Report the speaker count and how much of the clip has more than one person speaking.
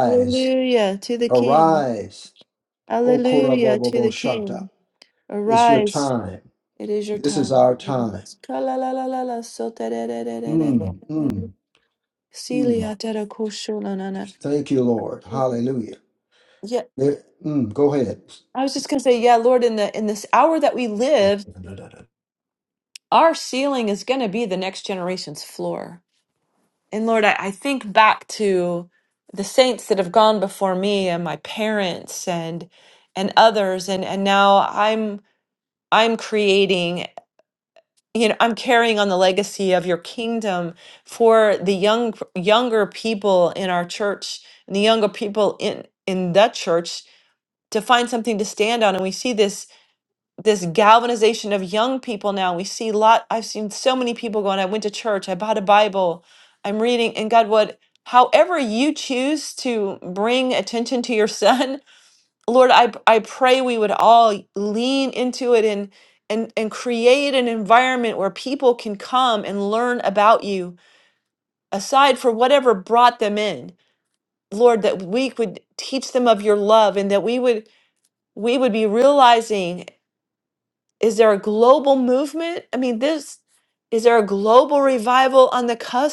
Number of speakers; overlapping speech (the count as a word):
two, about 4%